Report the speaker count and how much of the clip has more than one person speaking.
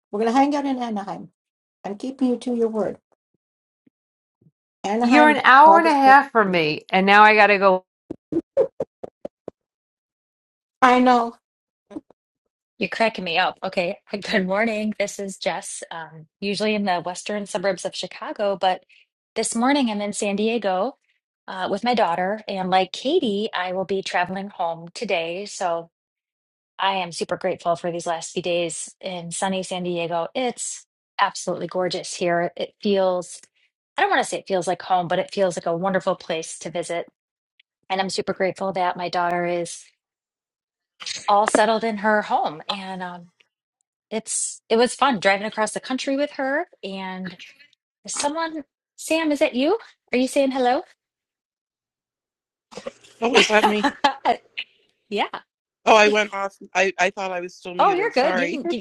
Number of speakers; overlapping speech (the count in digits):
4, about 3%